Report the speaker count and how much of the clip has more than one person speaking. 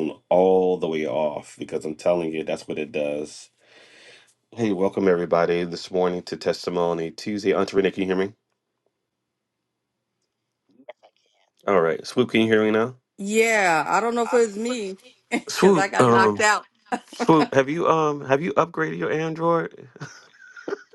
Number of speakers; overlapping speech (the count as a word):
two, about 5%